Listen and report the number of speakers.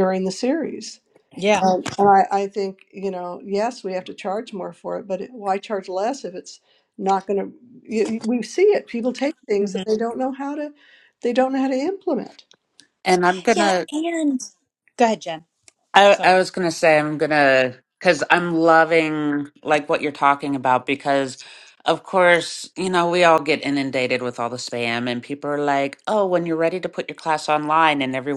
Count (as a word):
three